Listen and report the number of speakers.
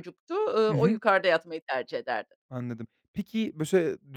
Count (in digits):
2